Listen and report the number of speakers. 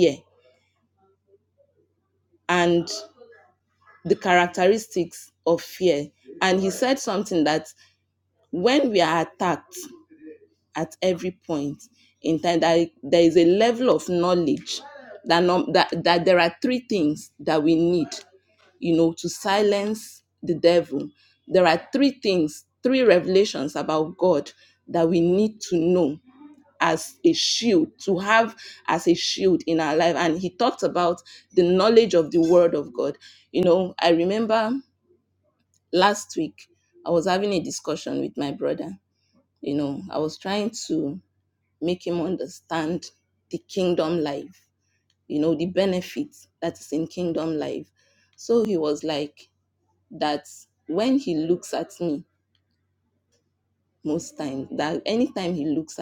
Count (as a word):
one